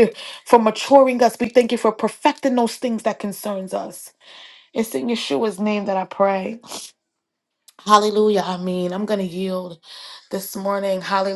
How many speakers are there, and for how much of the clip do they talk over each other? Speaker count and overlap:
one, no overlap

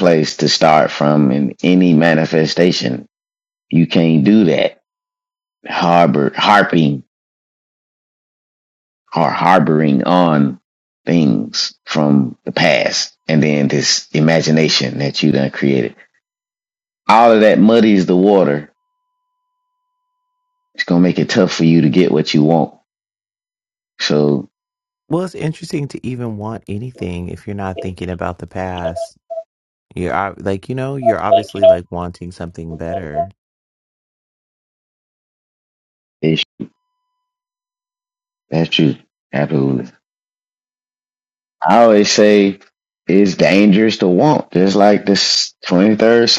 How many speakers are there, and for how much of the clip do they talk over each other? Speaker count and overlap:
two, no overlap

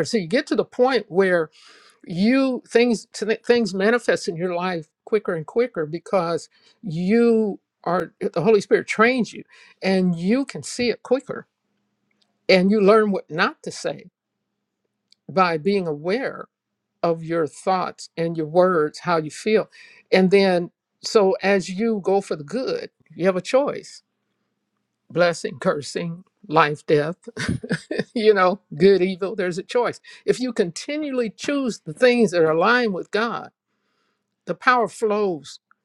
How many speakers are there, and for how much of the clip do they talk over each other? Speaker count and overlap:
one, no overlap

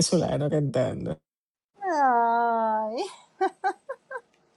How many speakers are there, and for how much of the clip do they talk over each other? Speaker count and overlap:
two, no overlap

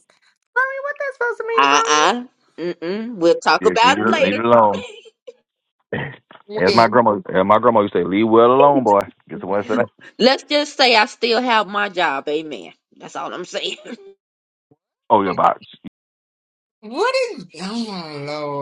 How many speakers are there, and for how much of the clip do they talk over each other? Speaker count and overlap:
three, about 7%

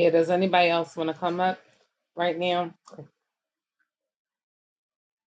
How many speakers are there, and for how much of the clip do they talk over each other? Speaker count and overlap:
one, no overlap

